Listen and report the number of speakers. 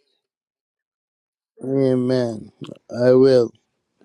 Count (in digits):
1